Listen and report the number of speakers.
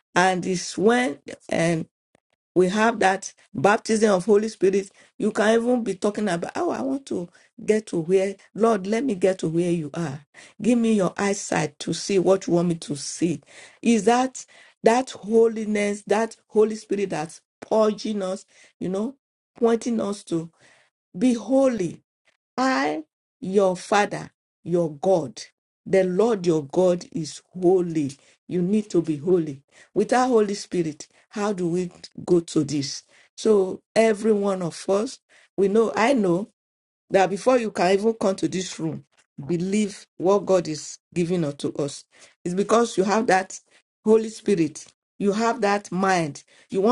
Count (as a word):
one